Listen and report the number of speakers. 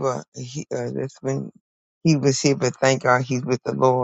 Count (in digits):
1